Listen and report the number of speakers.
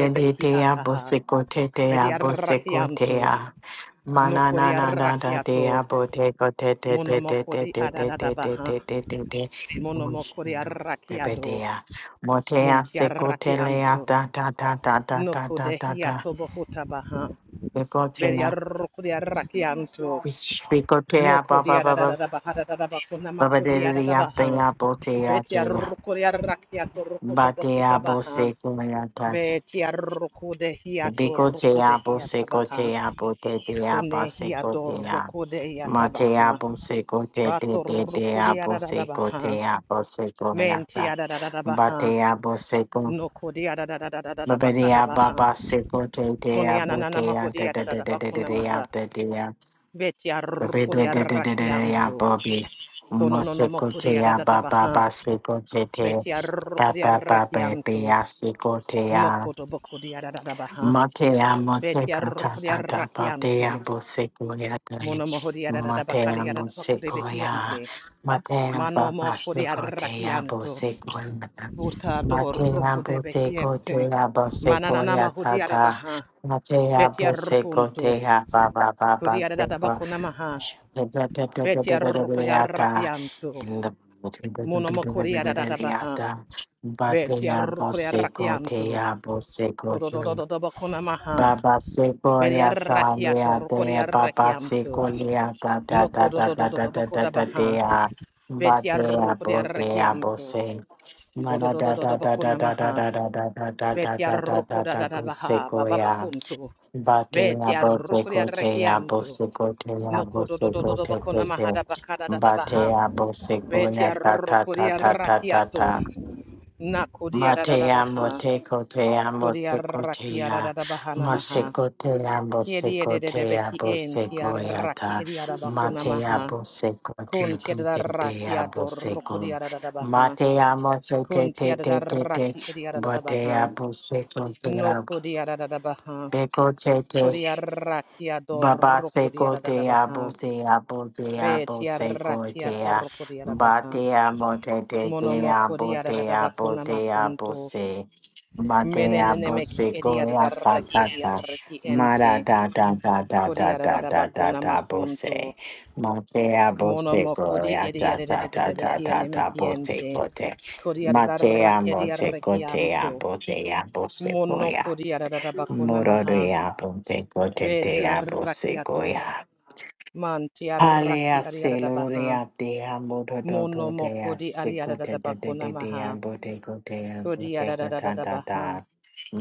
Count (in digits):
2